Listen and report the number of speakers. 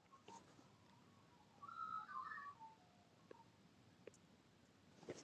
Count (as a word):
zero